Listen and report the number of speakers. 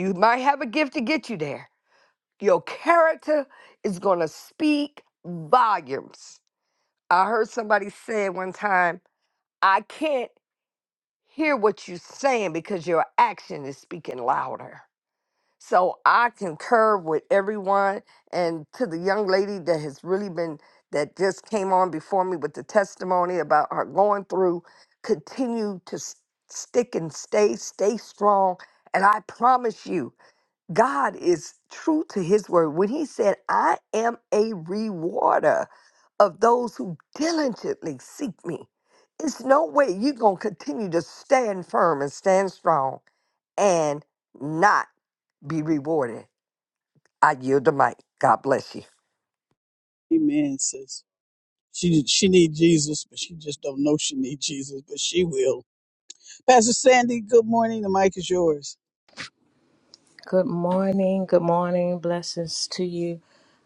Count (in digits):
3